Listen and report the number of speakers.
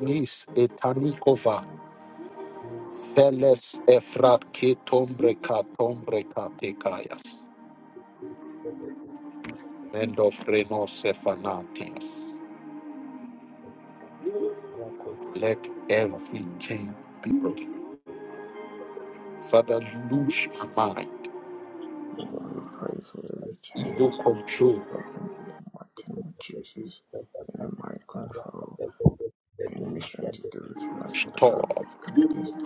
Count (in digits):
3